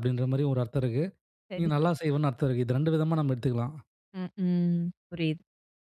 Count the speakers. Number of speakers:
2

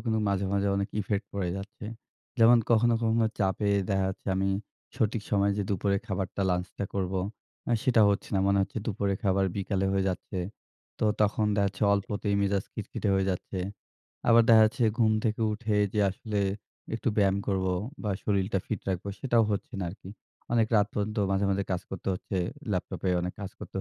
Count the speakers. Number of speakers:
1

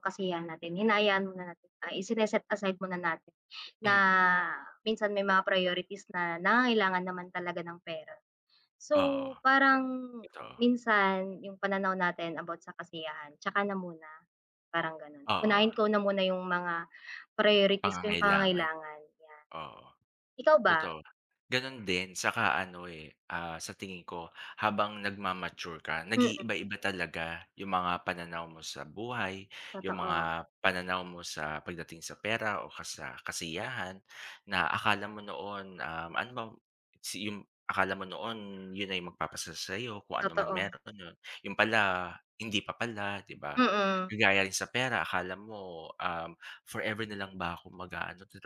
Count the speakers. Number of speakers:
2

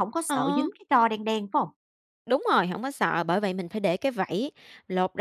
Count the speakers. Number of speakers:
2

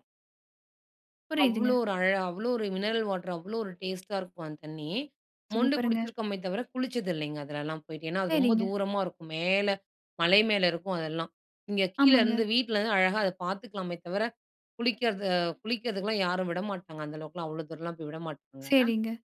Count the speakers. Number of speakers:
2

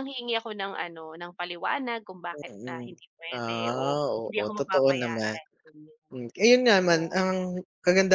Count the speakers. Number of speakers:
2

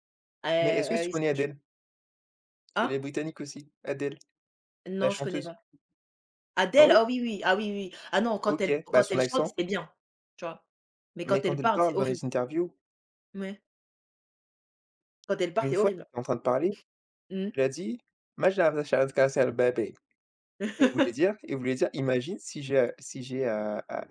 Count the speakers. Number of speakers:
2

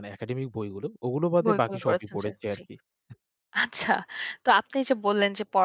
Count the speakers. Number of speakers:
2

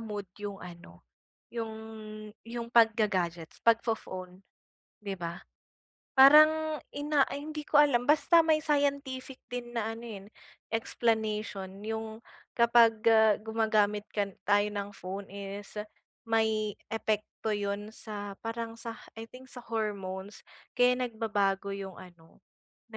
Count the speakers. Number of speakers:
1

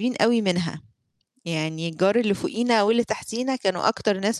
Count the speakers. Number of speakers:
1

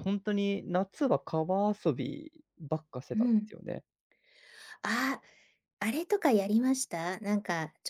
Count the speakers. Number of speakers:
2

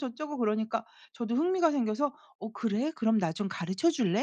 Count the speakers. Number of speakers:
1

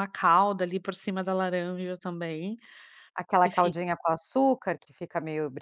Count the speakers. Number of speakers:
2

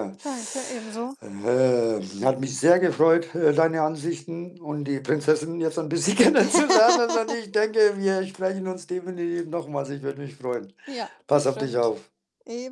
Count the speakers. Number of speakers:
2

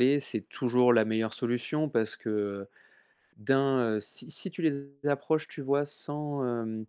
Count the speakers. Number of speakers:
1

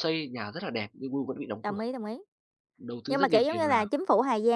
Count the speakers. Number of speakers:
2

